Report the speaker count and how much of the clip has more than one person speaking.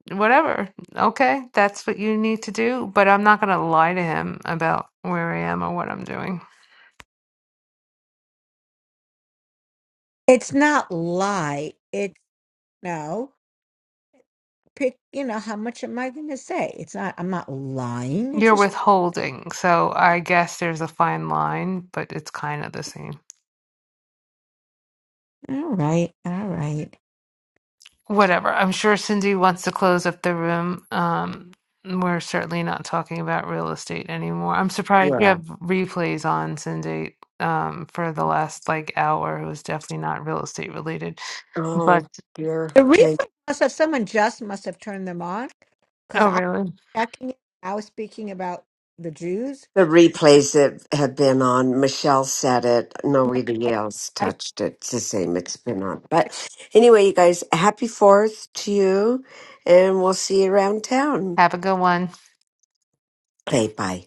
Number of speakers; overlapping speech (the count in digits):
3, about 3%